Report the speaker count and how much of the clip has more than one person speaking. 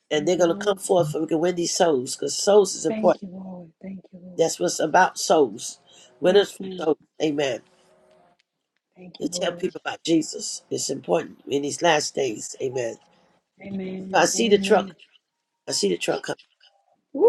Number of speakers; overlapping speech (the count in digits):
2, about 17%